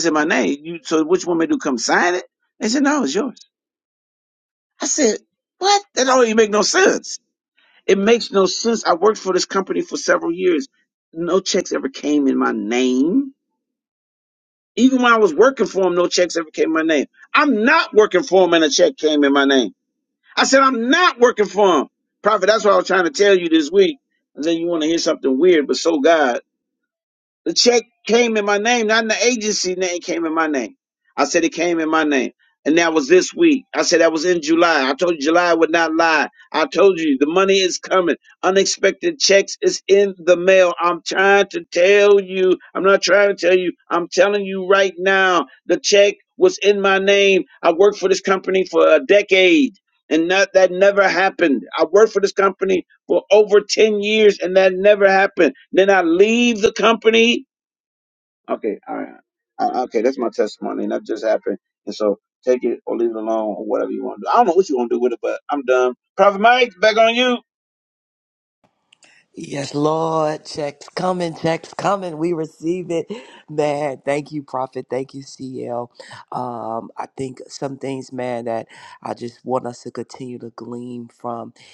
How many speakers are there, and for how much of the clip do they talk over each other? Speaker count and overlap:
2, no overlap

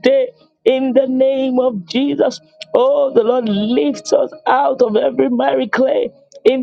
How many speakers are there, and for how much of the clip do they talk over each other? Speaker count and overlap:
1, no overlap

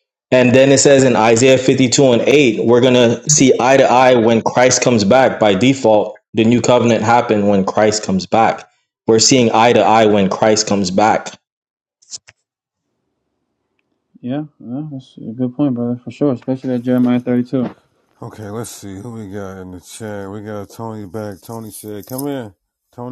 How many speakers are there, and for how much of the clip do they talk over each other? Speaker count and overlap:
3, no overlap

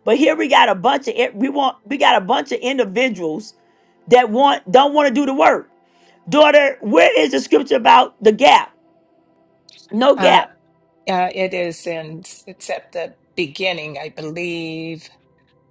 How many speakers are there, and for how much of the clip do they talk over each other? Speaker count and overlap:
2, about 2%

